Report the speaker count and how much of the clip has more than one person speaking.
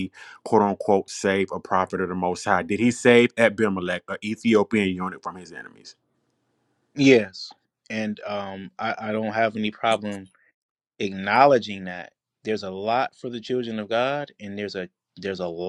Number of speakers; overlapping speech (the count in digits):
2, no overlap